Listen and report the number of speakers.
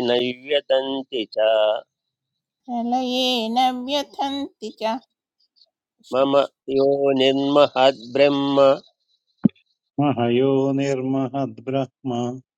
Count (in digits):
3